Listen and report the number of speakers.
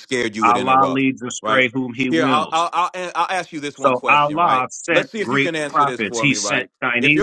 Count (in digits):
2